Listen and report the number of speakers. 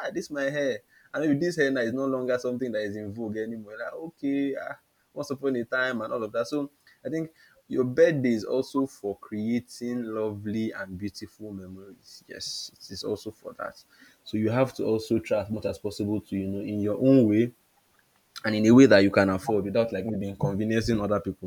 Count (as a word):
one